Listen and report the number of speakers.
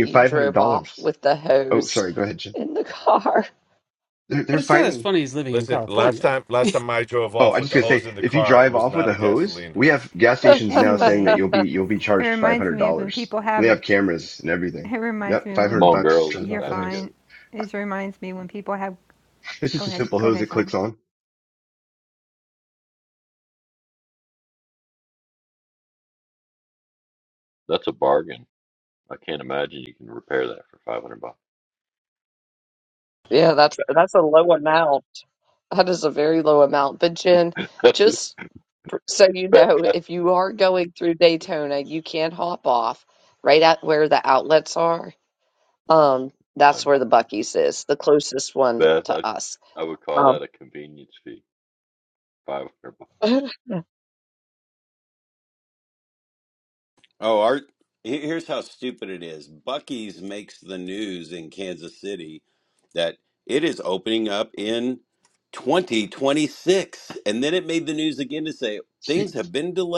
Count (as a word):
seven